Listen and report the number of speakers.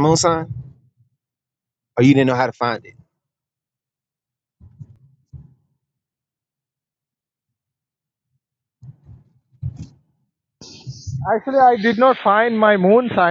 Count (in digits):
2